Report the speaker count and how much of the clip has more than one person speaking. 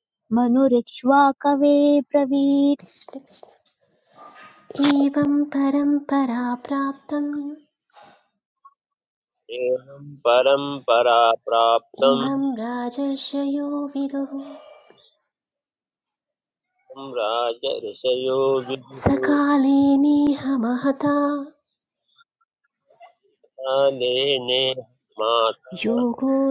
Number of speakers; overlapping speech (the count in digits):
3, about 3%